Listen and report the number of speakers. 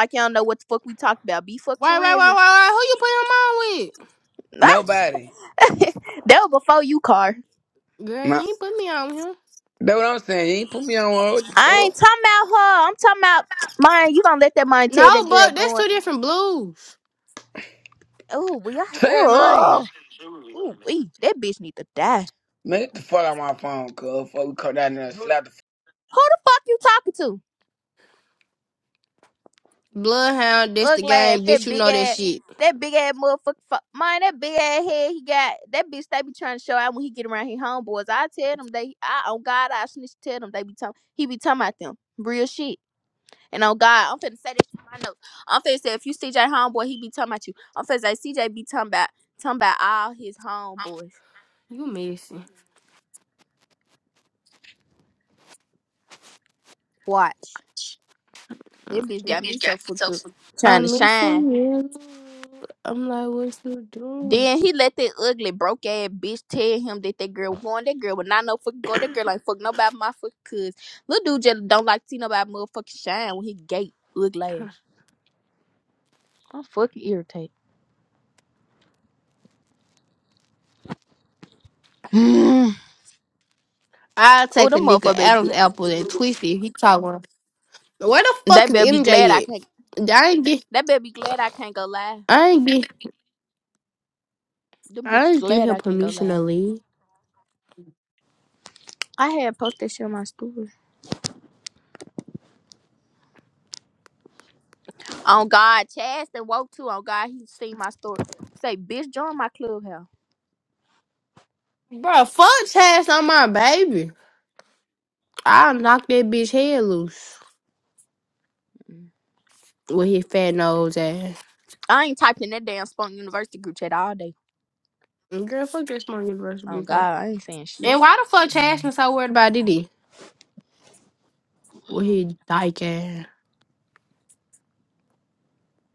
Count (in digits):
3